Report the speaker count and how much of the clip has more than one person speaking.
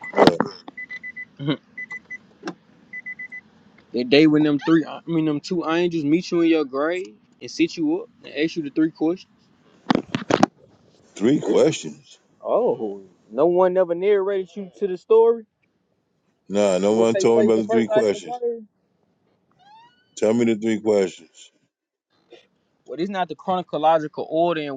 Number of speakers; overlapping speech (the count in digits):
2, about 6%